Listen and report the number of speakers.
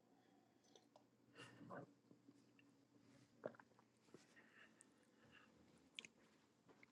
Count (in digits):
0